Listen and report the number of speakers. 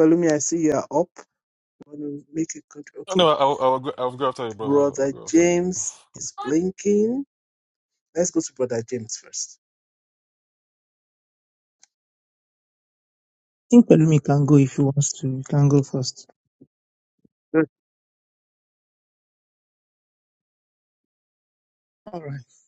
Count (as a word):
three